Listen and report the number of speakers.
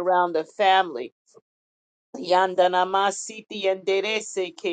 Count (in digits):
1